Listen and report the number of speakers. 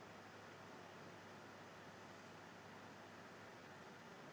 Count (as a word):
zero